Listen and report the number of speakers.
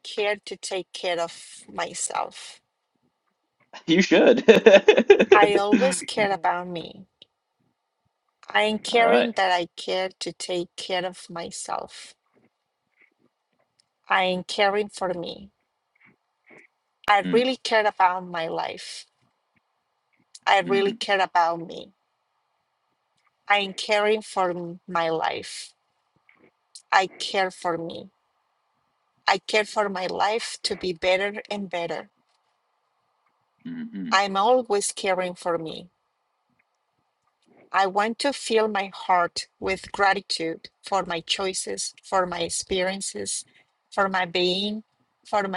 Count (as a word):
two